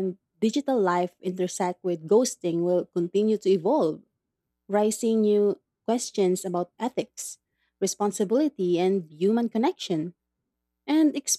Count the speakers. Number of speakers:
one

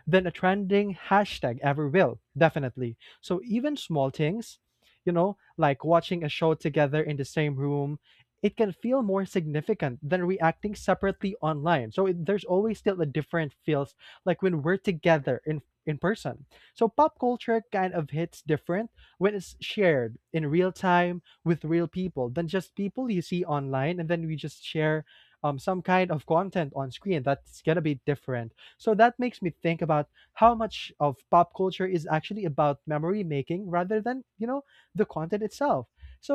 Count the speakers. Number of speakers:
one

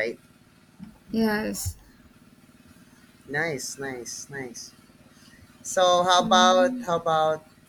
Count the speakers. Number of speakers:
two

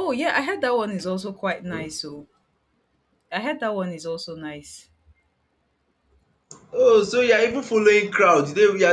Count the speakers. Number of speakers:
two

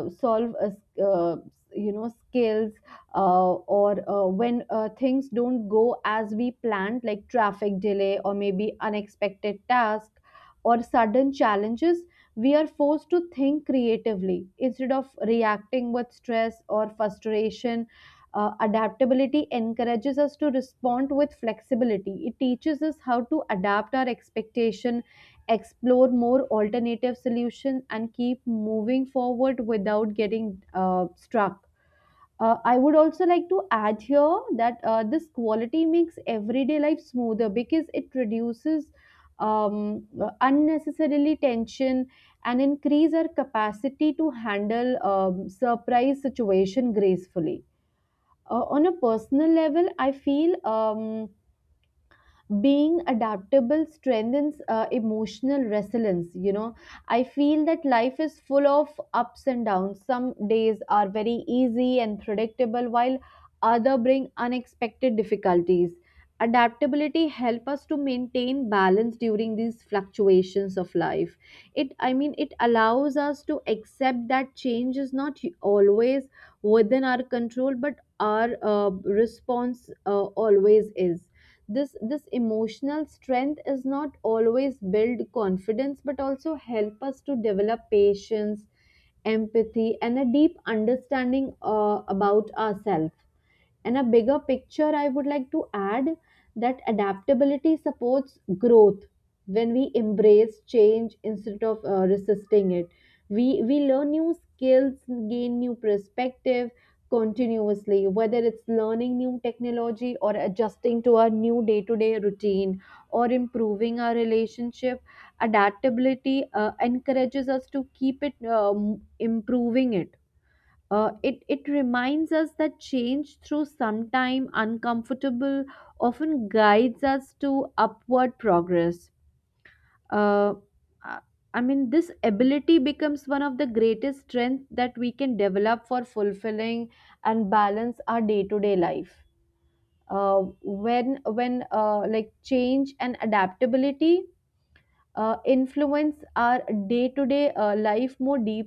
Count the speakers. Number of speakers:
one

